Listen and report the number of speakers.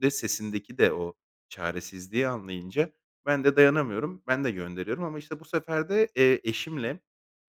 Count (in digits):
1